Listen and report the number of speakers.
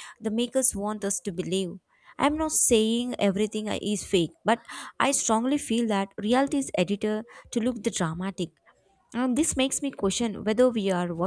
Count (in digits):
1